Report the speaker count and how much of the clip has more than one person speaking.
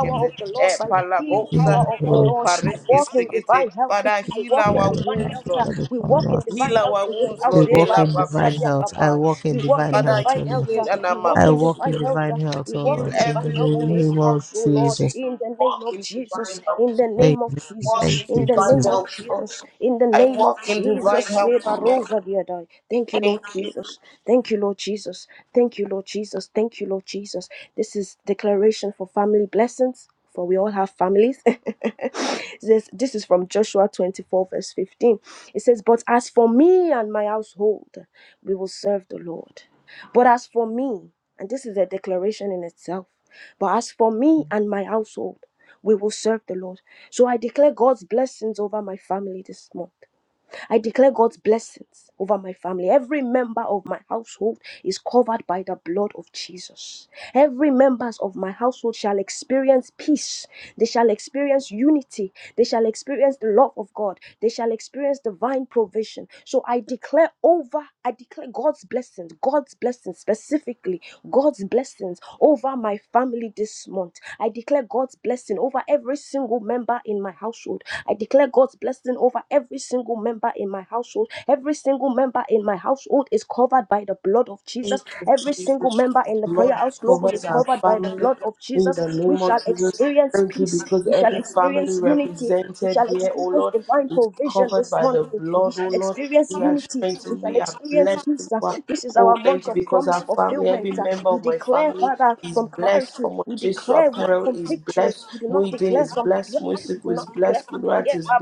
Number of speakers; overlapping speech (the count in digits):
3, about 39%